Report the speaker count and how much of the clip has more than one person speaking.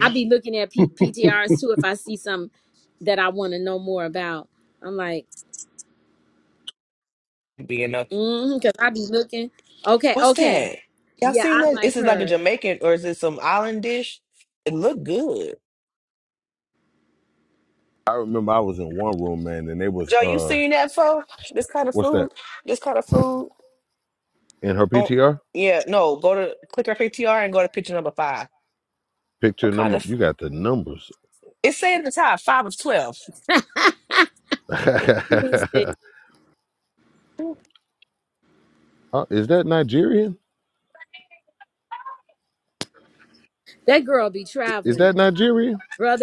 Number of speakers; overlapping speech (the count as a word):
three, about 7%